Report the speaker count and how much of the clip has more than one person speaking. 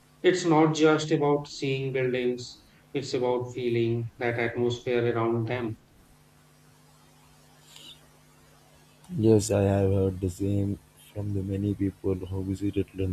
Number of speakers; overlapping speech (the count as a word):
two, no overlap